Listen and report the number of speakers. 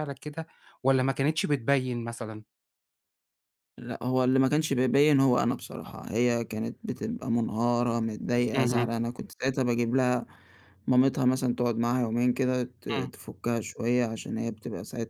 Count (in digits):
2